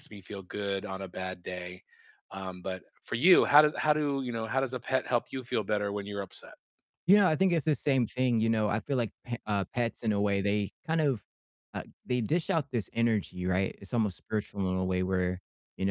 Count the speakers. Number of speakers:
2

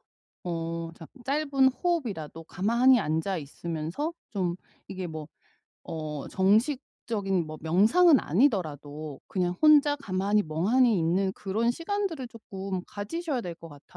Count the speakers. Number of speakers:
1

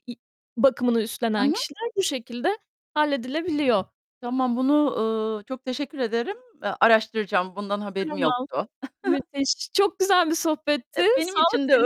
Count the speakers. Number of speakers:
2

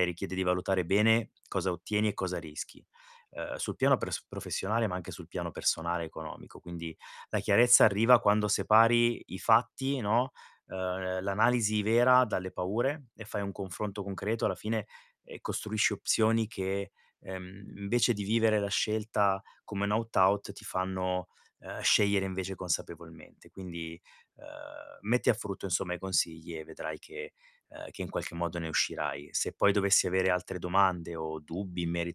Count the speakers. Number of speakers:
1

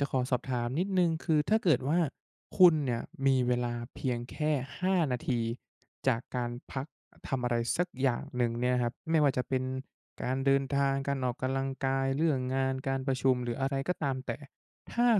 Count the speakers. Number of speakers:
1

